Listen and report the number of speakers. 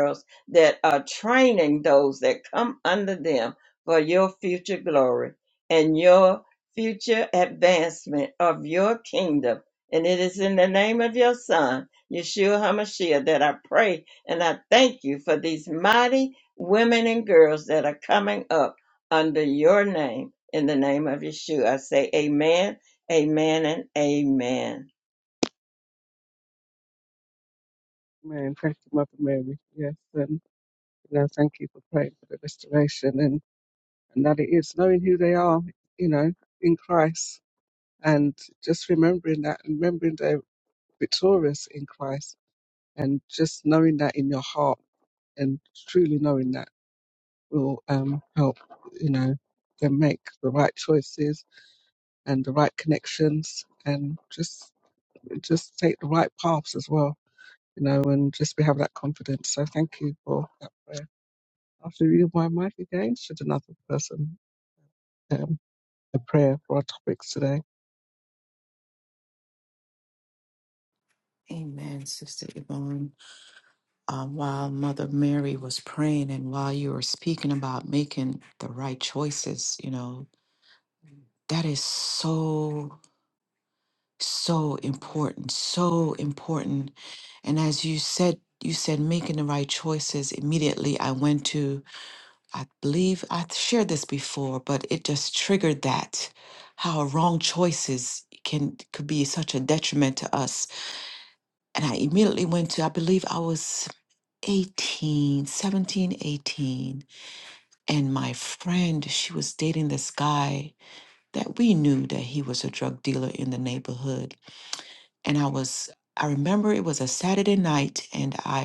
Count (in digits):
3